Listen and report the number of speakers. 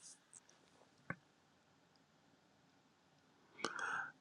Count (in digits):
0